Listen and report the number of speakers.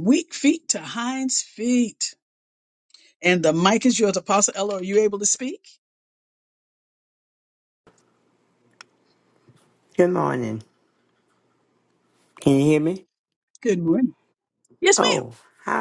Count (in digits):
2